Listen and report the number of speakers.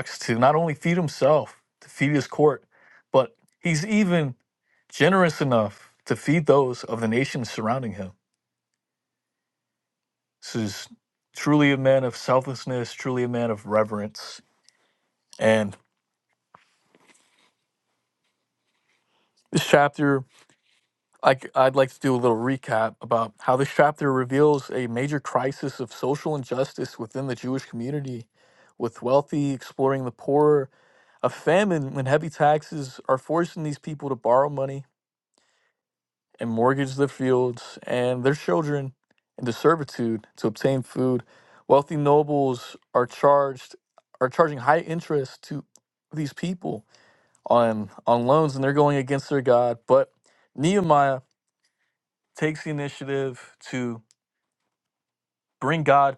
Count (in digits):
1